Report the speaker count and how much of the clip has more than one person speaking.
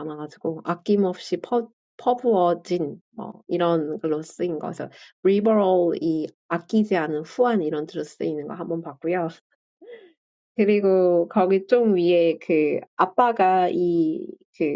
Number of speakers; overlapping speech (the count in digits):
1, no overlap